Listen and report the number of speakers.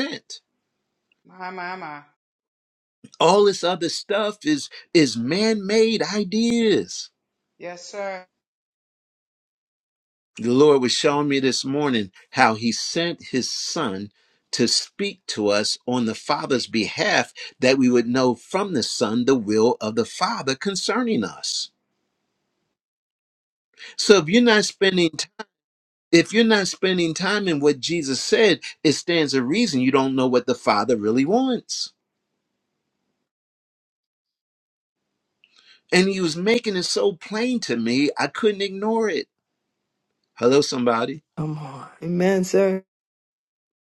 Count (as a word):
three